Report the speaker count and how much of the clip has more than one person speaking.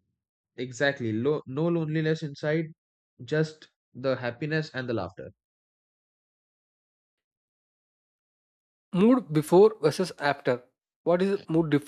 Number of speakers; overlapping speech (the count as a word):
two, no overlap